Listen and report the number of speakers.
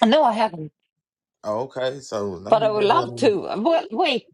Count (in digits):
2